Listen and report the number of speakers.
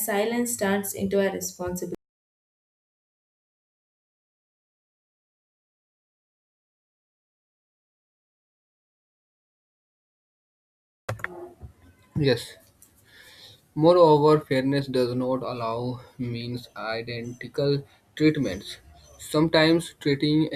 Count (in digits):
2